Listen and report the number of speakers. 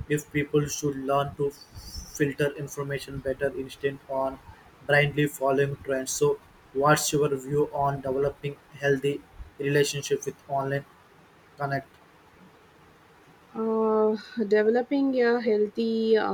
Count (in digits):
2